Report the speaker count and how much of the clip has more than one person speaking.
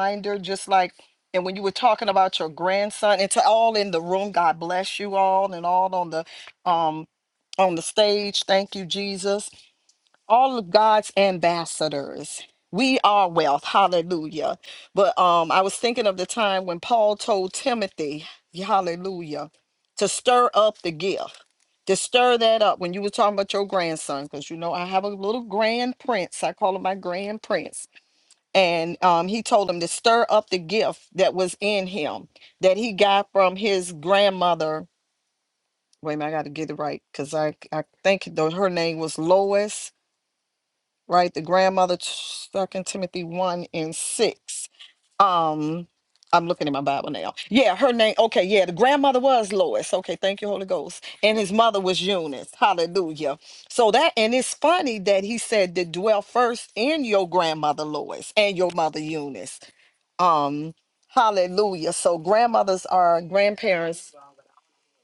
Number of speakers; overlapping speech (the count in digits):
1, no overlap